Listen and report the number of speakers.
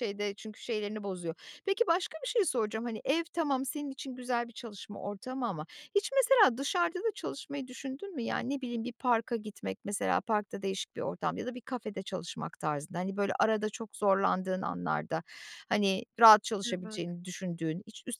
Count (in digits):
1